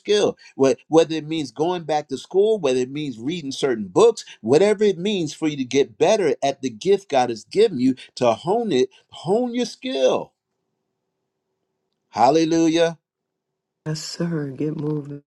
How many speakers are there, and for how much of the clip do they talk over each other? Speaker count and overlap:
2, no overlap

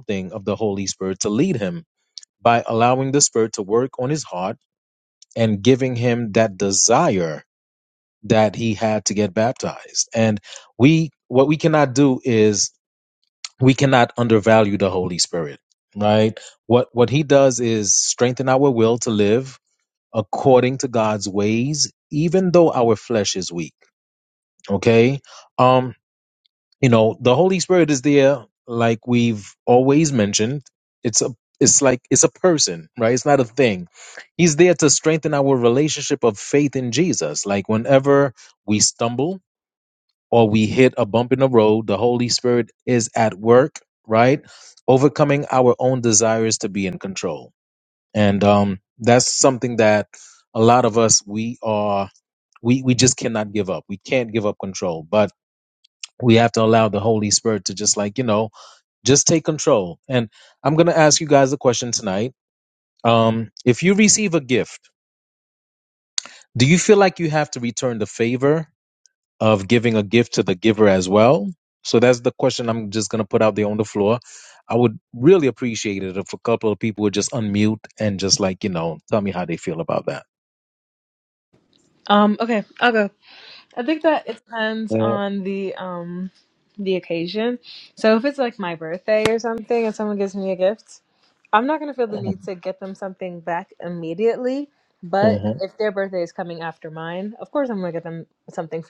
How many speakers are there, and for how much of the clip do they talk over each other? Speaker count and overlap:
2, under 1%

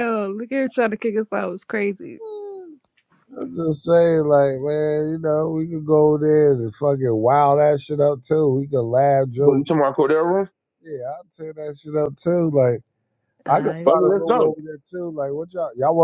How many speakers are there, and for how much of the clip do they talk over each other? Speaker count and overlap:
3, about 8%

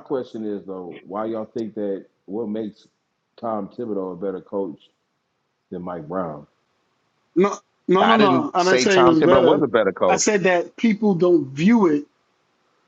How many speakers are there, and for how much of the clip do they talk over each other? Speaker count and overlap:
3, about 14%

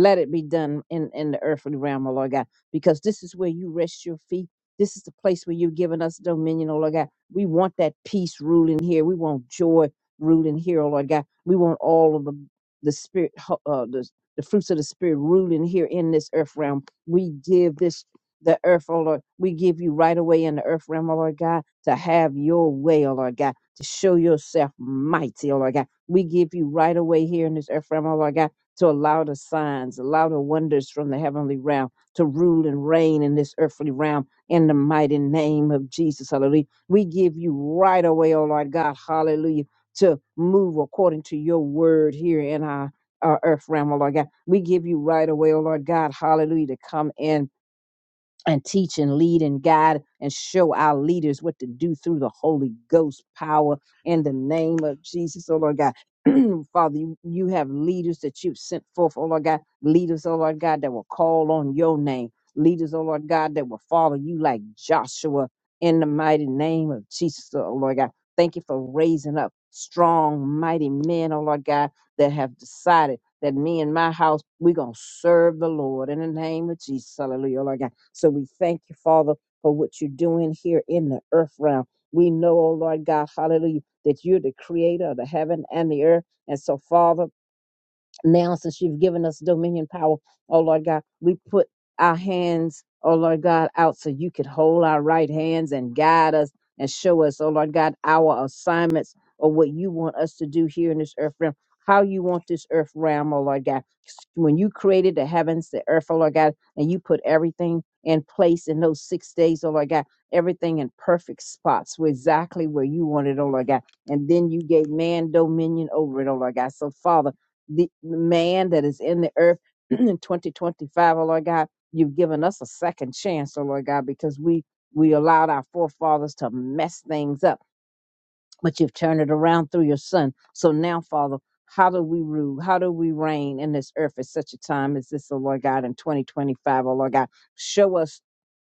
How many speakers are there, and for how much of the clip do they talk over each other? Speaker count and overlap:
1, no overlap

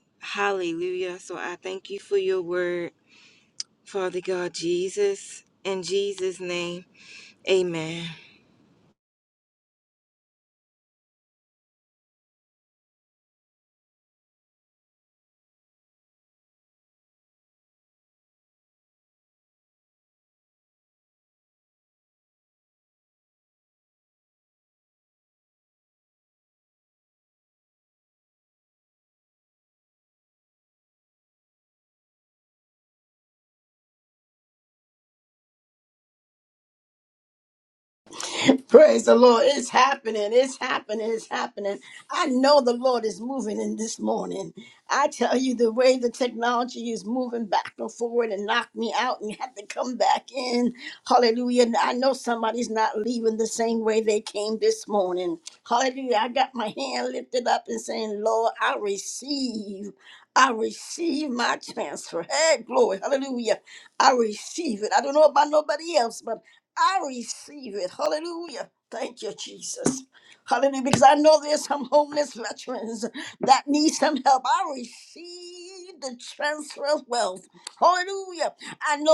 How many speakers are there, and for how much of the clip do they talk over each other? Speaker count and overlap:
2, no overlap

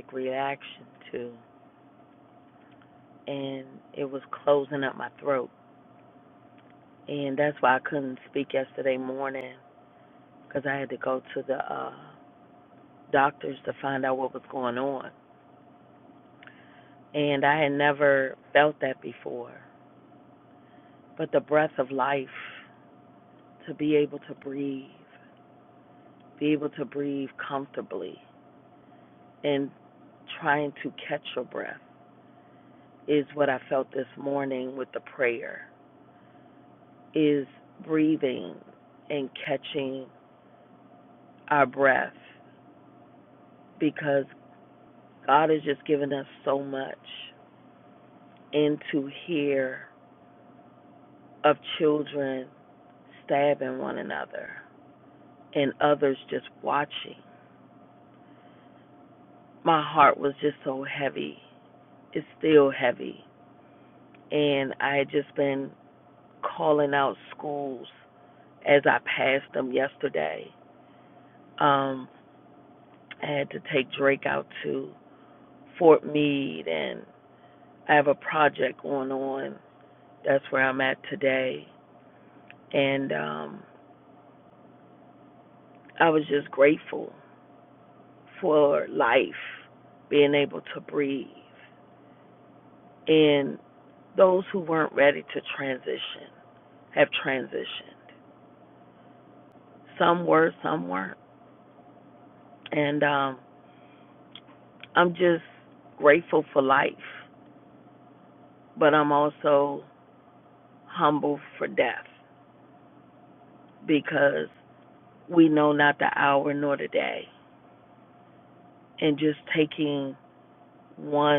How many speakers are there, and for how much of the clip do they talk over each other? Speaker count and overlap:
1, no overlap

